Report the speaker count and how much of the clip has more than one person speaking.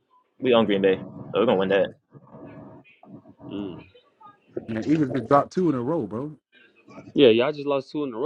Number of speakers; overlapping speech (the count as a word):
three, no overlap